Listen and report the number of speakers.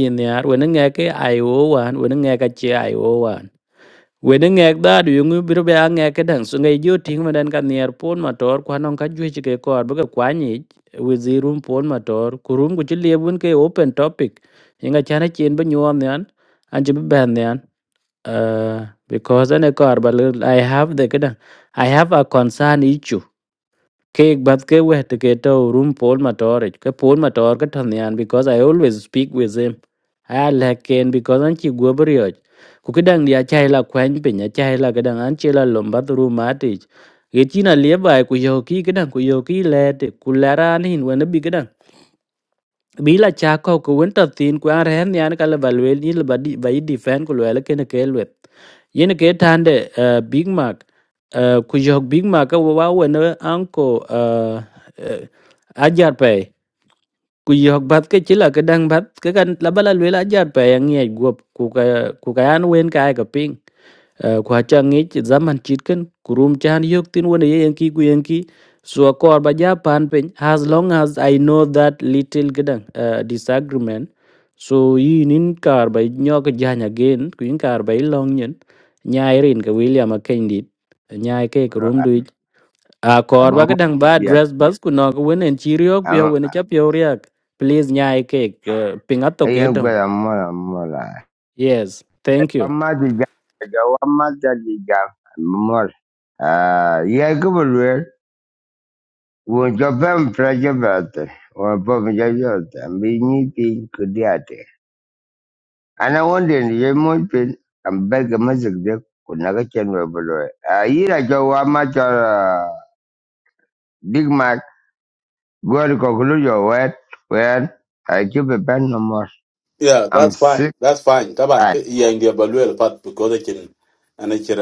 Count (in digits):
3